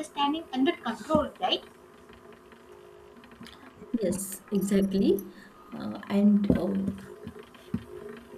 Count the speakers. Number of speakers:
2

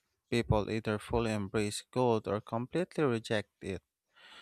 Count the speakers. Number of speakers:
1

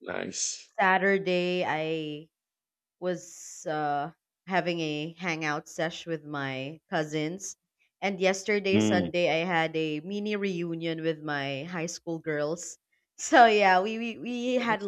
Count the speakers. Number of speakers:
2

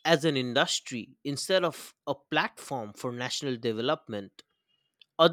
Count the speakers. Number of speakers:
1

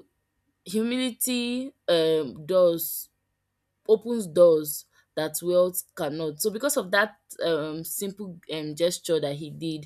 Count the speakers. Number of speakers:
1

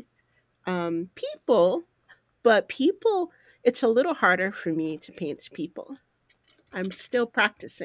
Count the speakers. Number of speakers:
1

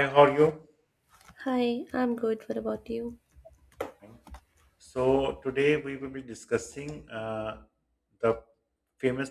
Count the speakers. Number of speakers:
2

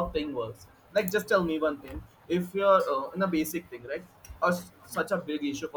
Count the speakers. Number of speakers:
1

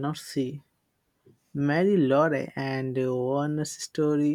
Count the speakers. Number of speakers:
1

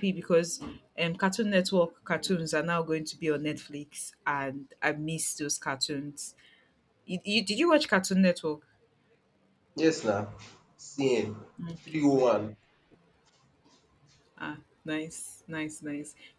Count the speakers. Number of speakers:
2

